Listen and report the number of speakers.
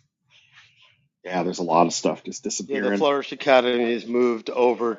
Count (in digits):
2